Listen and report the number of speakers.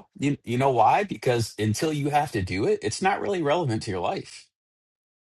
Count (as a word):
one